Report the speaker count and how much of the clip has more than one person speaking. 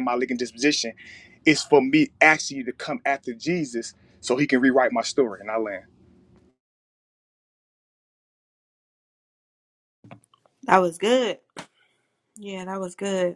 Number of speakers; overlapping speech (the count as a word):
two, no overlap